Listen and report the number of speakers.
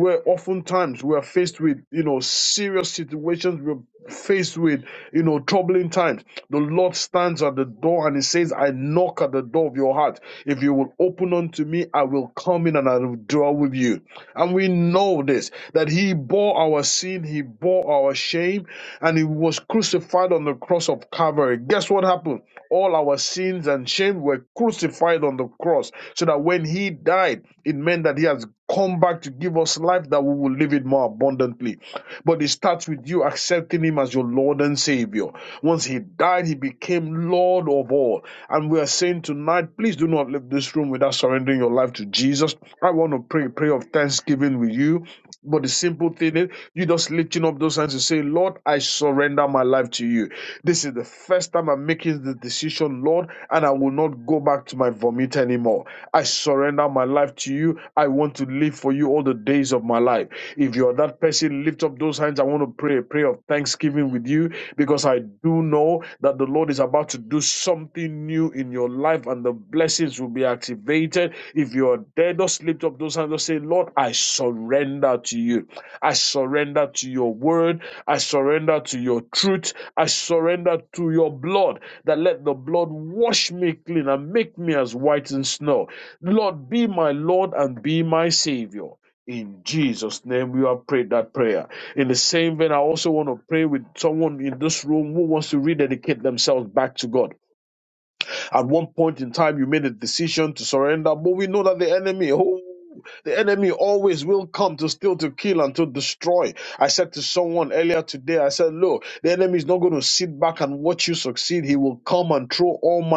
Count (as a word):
one